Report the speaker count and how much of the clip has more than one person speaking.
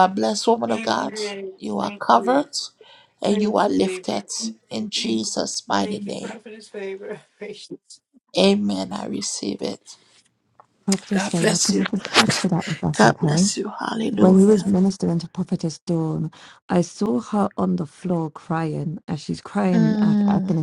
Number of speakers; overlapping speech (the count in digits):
3, about 30%